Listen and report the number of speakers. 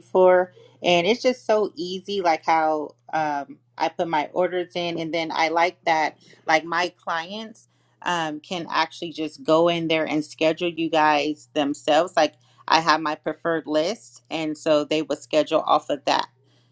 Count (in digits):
1